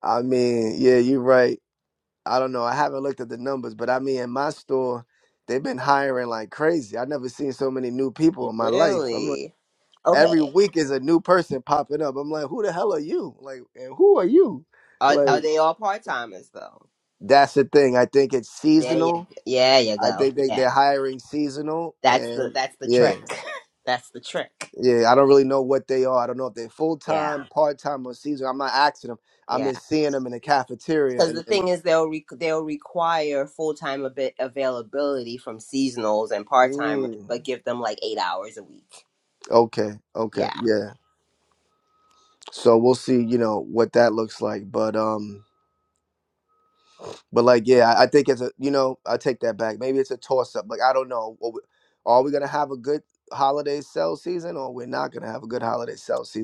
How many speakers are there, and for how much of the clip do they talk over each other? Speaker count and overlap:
2, about 10%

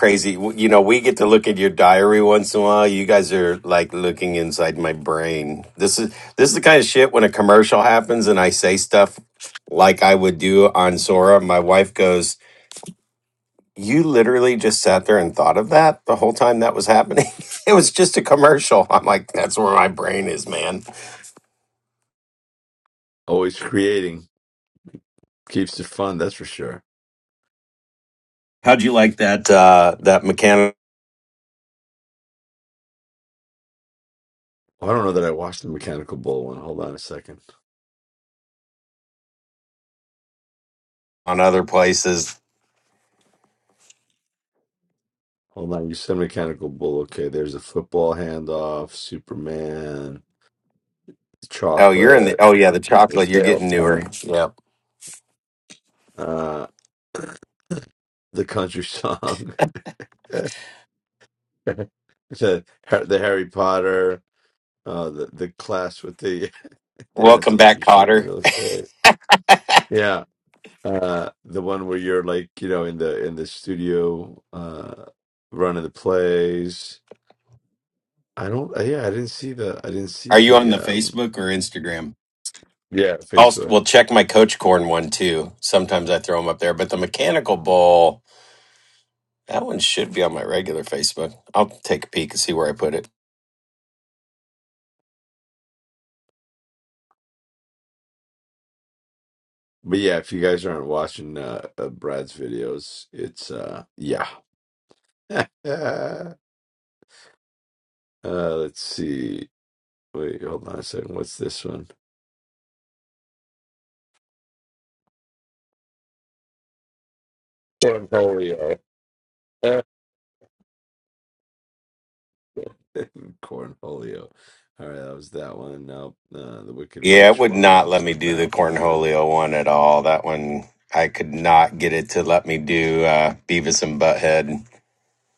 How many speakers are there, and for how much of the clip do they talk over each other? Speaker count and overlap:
2, about 4%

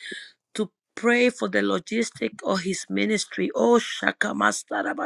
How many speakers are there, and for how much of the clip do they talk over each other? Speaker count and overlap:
1, no overlap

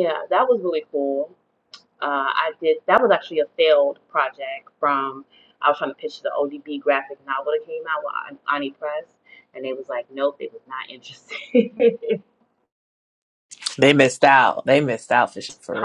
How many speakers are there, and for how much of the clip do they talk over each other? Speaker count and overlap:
2, about 1%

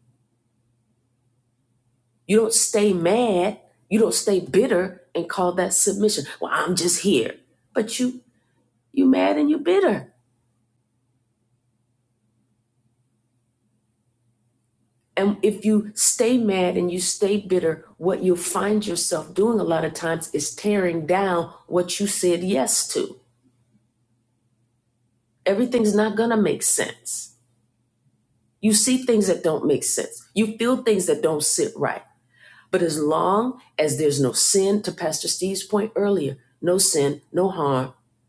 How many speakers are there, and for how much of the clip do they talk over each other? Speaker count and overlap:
1, no overlap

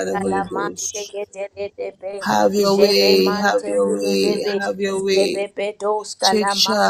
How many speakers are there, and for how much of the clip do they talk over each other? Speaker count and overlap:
2, about 58%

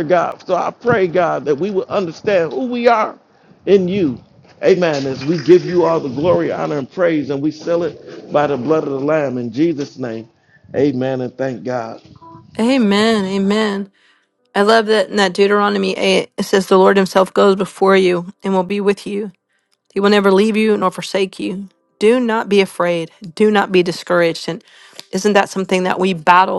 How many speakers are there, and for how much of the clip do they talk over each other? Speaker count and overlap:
2, no overlap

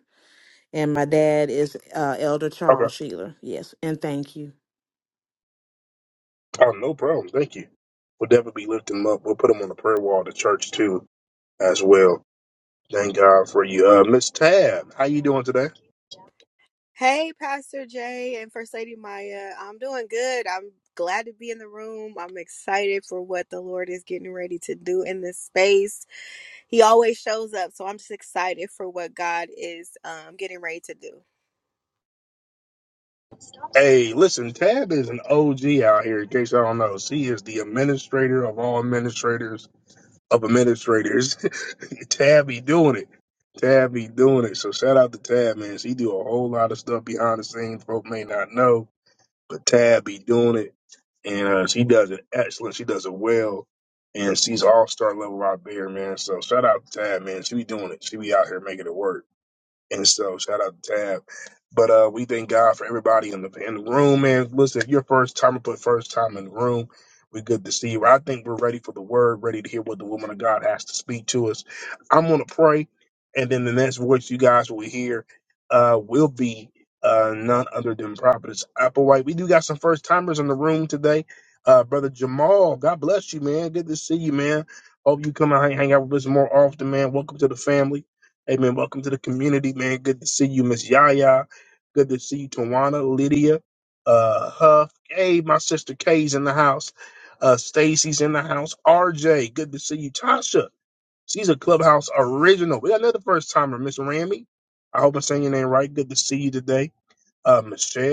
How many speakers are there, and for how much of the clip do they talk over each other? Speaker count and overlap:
3, under 1%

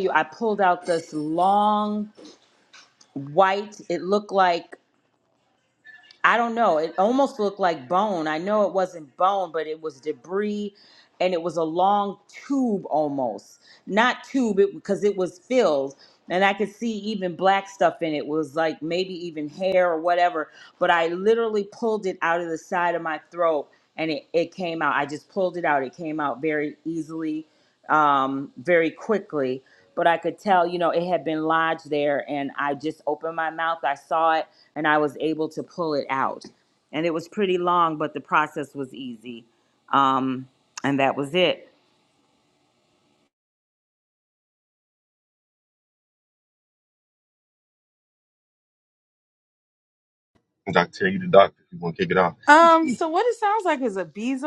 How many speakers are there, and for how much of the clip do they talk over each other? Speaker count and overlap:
3, no overlap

